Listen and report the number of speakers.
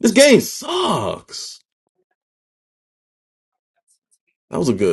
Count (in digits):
1